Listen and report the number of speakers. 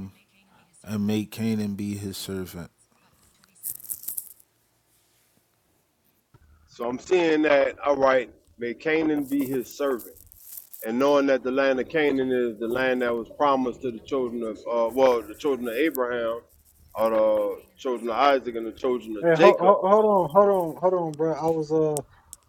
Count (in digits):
3